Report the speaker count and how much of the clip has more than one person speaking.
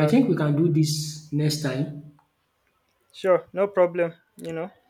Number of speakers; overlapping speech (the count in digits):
2, about 4%